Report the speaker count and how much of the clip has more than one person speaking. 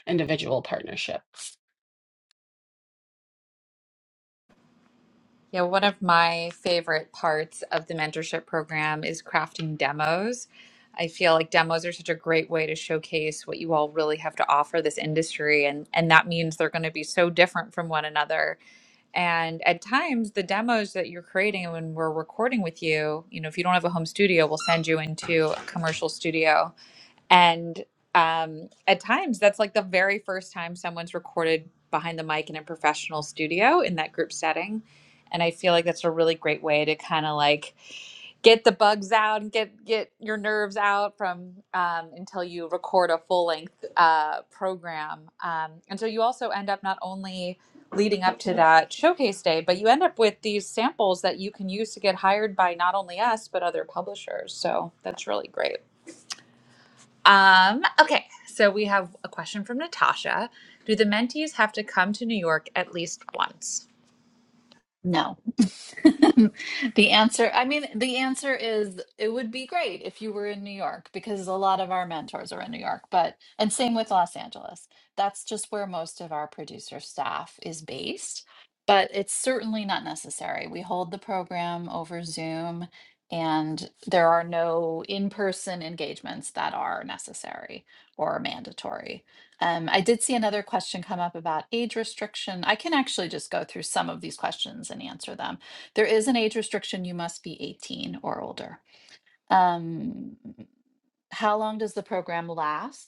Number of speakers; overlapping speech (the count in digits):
3, no overlap